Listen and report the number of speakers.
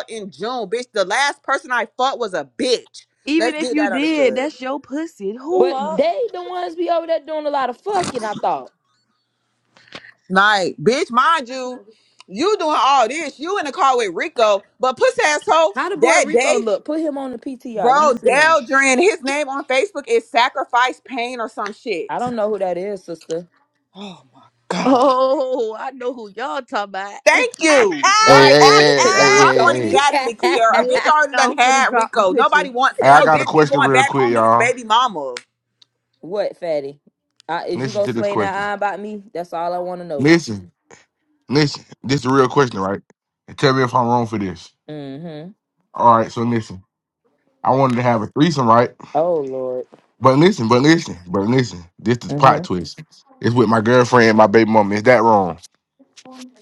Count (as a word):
four